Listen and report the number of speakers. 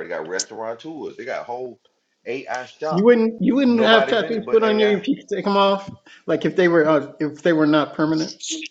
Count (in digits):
2